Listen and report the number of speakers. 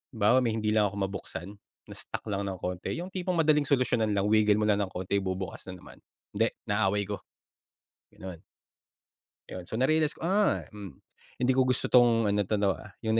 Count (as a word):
one